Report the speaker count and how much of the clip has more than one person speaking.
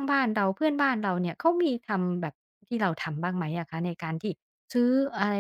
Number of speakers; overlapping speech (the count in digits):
1, no overlap